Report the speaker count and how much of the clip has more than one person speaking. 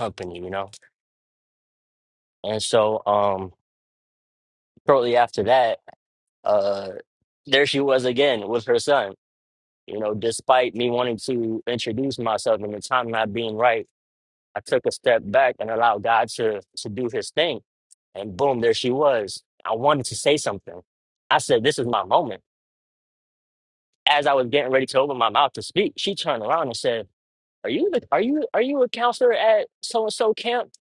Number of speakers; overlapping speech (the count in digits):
1, no overlap